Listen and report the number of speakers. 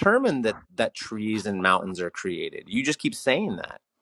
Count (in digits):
1